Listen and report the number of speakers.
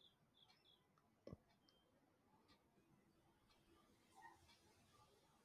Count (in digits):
0